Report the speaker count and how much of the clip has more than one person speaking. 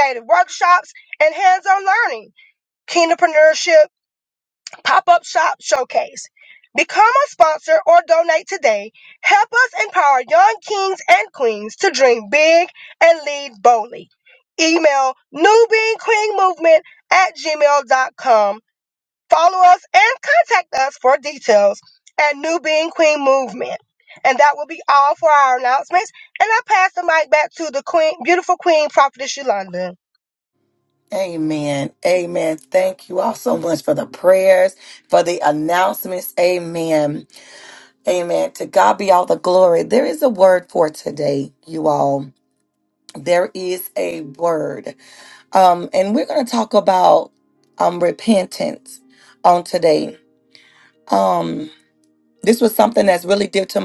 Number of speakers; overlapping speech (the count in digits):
2, no overlap